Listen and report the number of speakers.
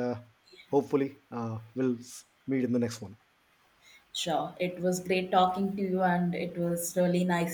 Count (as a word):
two